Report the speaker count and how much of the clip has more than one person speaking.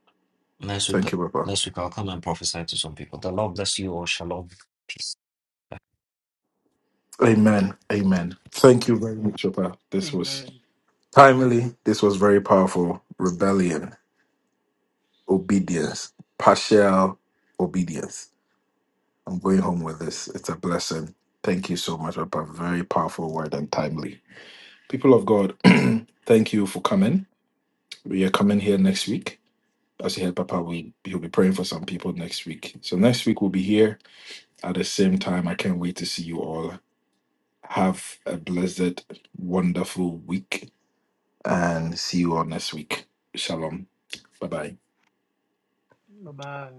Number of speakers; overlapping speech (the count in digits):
3, about 1%